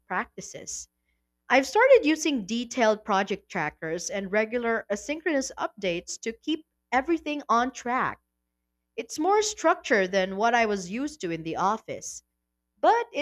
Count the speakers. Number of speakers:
one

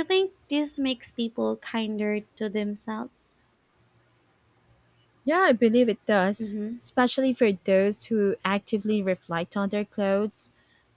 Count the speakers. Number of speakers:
two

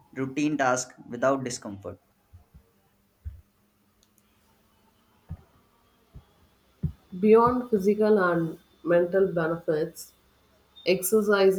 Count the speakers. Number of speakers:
two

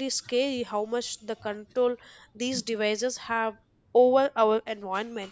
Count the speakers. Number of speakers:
one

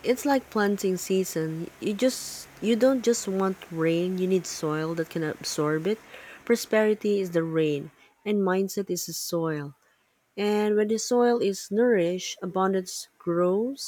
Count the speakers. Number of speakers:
one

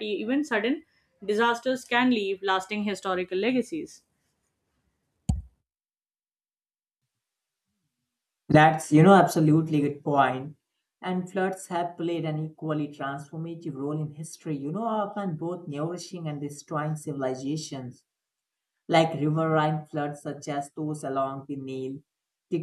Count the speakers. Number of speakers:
two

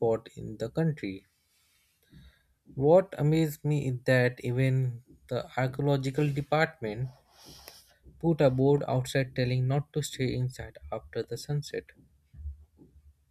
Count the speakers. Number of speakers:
one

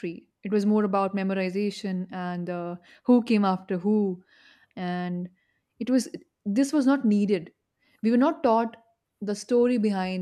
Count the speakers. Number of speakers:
one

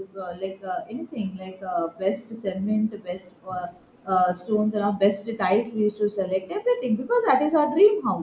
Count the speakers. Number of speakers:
one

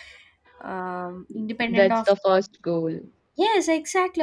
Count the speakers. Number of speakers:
two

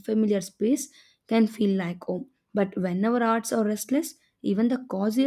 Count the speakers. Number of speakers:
one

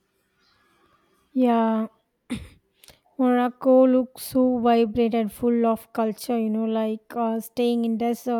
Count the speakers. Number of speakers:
one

